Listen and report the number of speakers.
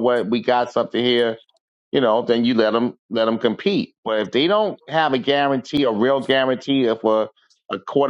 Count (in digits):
1